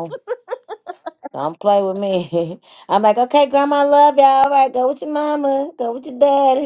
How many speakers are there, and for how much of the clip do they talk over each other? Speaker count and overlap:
1, no overlap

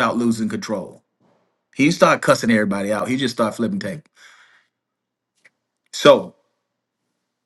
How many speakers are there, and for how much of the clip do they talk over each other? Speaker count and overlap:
1, no overlap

